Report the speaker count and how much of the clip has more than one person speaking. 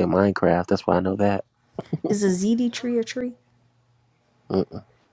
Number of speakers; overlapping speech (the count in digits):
2, no overlap